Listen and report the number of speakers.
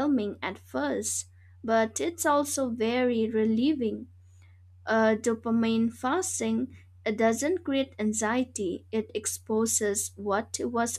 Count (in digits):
1